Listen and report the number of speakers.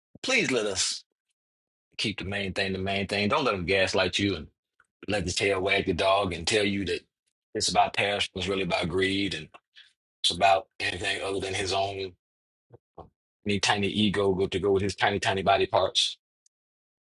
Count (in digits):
1